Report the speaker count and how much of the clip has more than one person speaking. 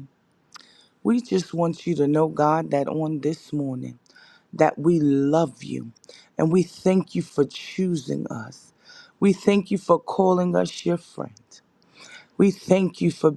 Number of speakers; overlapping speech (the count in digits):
1, no overlap